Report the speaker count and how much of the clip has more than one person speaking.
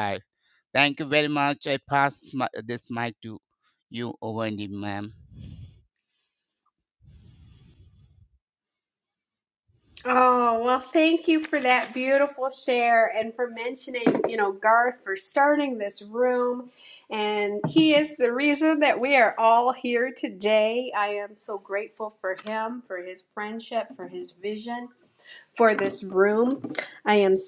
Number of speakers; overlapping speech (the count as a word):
two, no overlap